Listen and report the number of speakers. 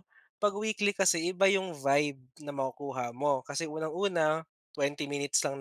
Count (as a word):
one